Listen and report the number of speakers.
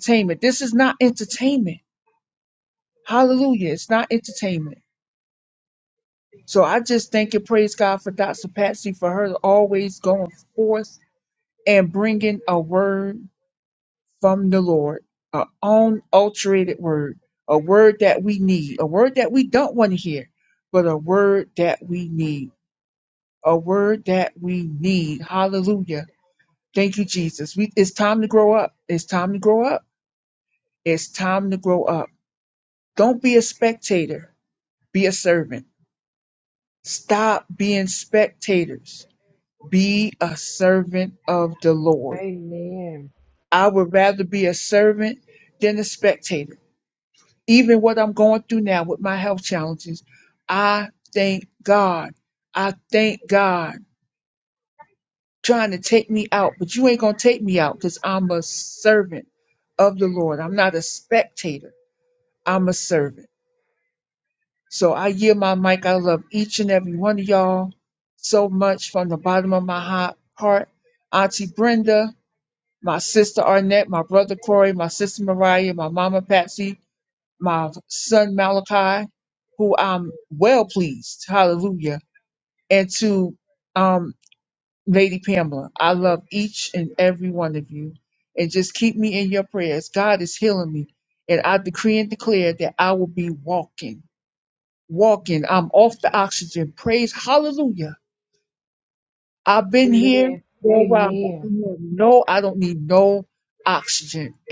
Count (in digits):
2